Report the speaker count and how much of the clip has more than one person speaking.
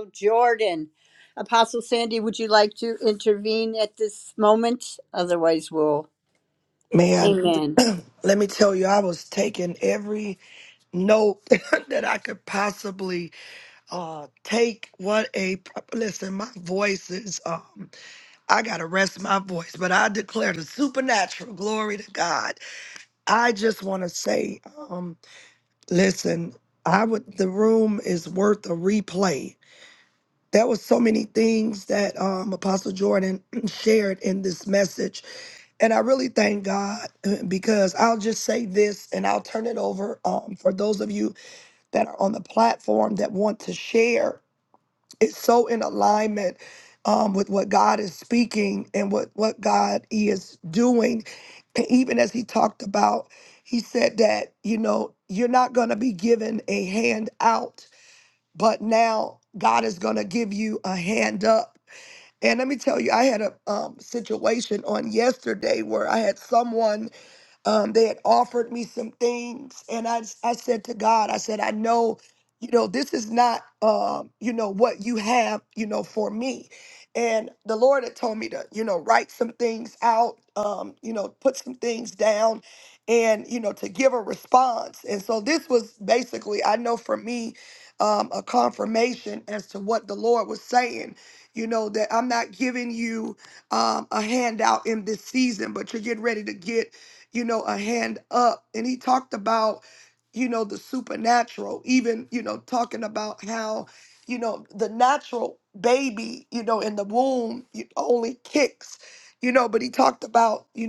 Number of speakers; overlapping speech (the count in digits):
2, under 1%